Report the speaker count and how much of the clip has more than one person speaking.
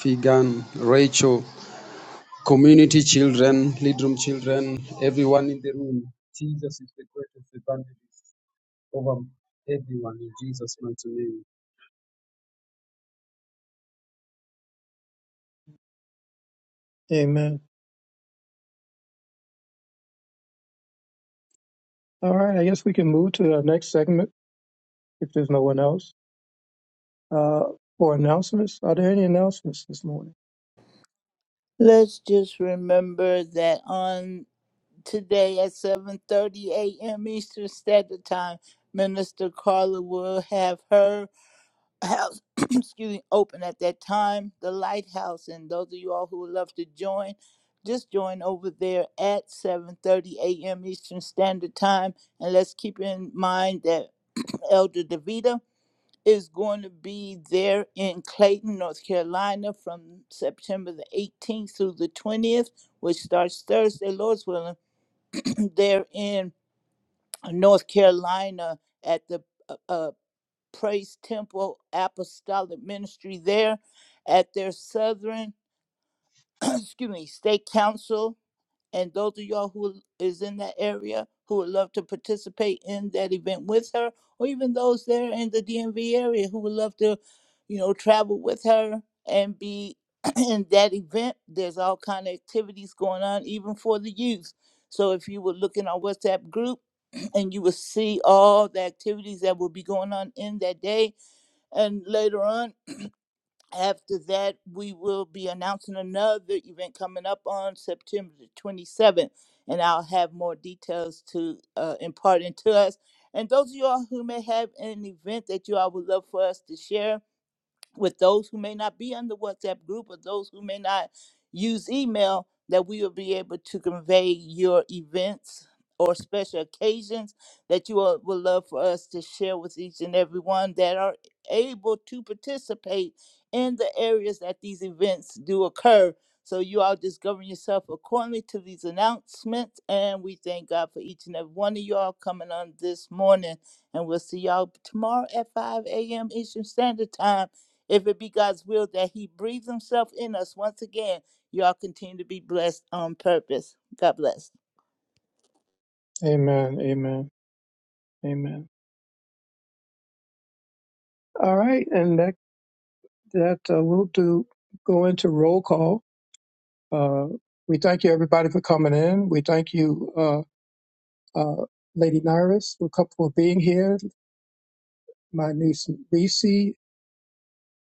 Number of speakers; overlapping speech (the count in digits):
3, no overlap